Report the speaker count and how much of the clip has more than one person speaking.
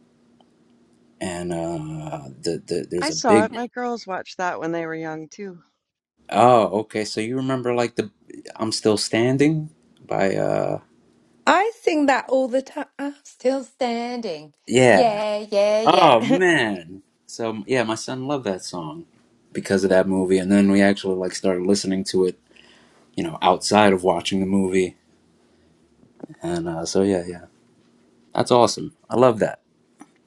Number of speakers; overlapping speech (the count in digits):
3, about 4%